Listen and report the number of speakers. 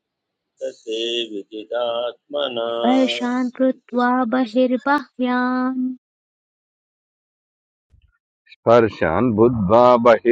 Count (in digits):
3